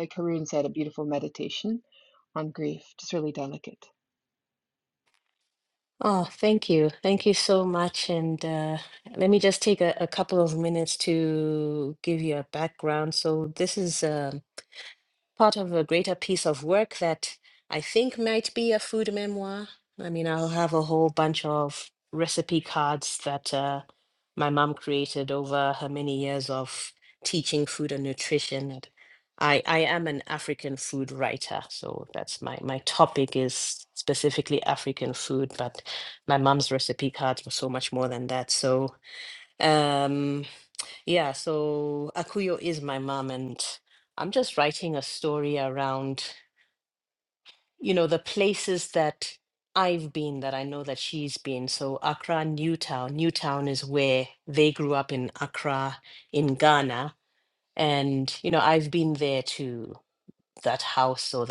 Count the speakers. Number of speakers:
2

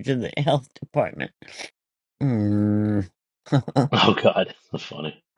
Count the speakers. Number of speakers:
2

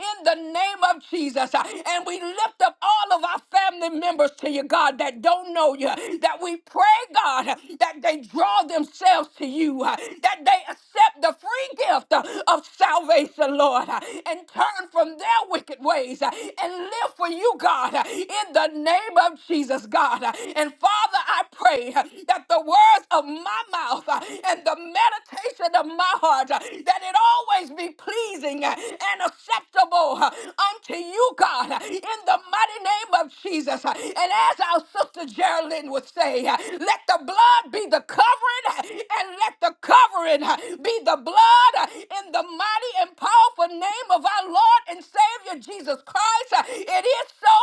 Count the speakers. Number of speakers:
1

